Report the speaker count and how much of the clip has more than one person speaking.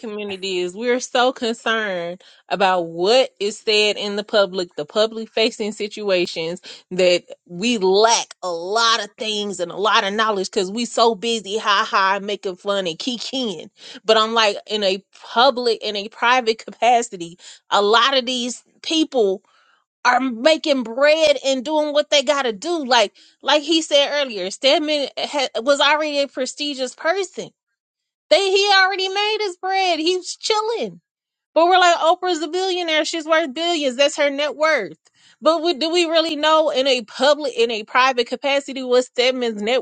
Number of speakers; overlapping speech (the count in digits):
1, no overlap